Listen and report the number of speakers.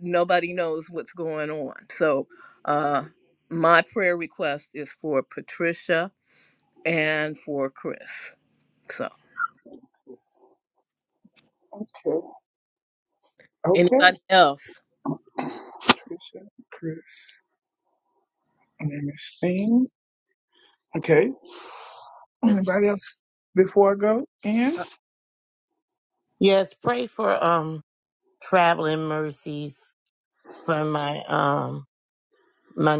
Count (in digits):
3